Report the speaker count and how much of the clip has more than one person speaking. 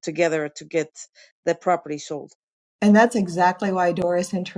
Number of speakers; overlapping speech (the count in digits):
2, no overlap